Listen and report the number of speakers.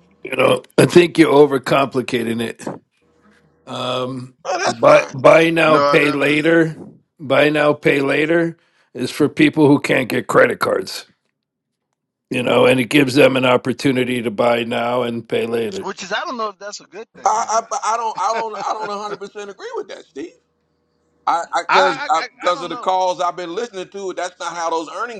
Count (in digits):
3